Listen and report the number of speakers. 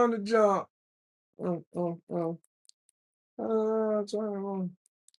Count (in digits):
1